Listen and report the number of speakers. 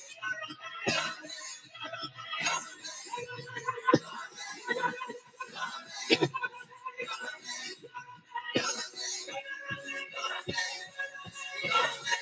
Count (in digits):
0